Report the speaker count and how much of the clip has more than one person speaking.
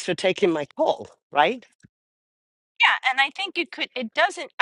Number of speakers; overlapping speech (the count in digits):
2, no overlap